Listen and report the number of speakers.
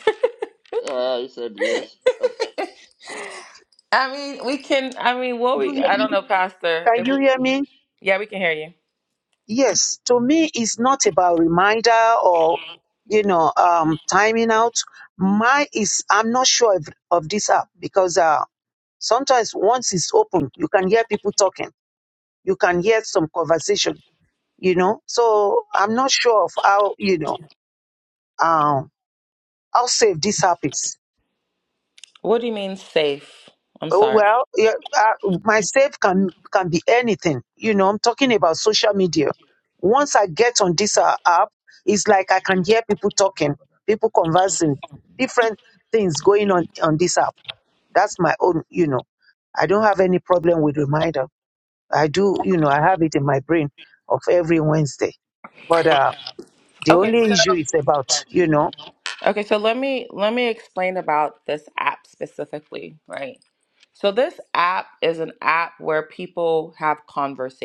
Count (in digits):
3